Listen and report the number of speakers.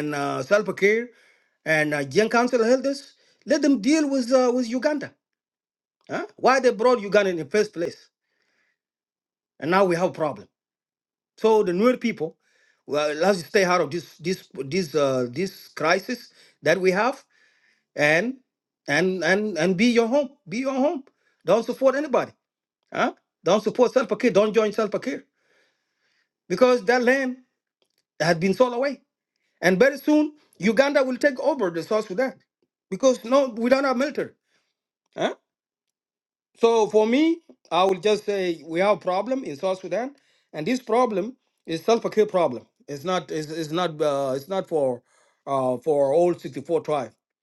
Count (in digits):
1